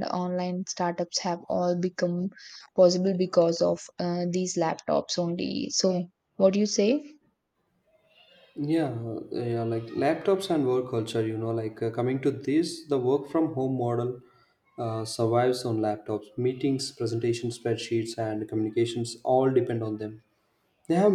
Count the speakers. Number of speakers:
2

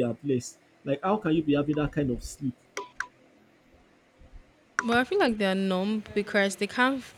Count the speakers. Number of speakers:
2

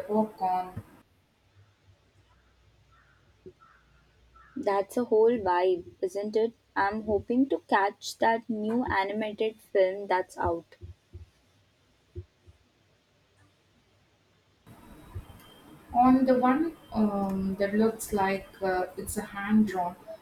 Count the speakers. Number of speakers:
2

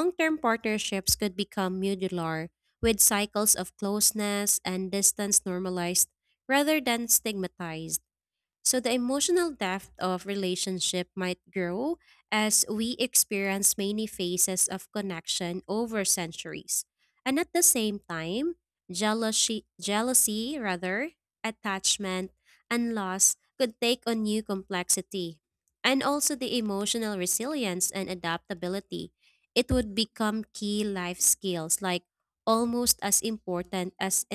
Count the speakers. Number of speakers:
1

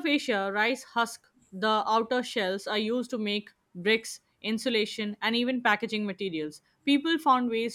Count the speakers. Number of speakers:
1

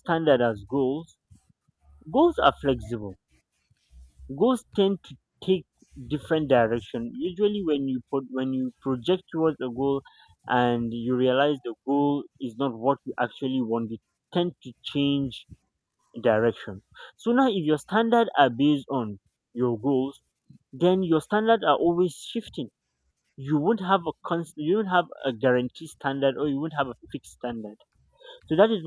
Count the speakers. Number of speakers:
1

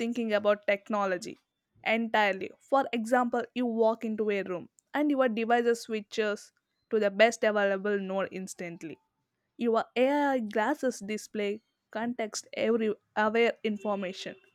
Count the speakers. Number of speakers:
1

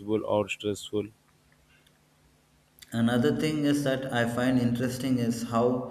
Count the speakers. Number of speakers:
2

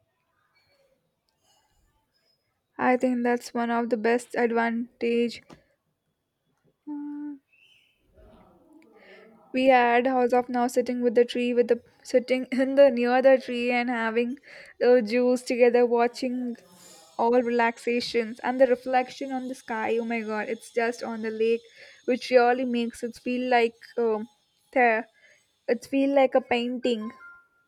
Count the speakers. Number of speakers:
1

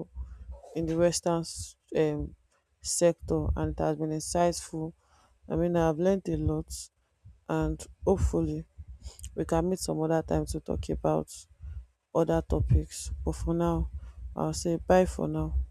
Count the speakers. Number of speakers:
1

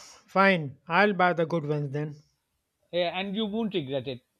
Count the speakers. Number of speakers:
2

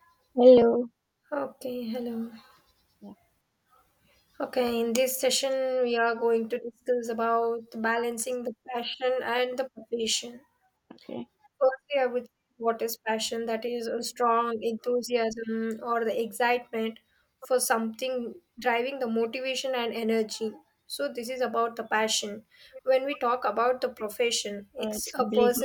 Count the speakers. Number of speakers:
2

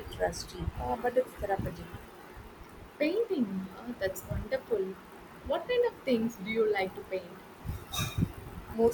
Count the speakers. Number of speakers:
2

